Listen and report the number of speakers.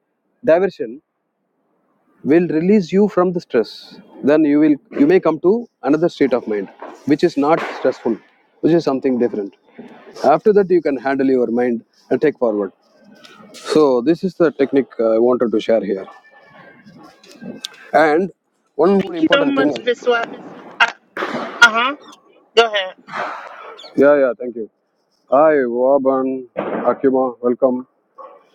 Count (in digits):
2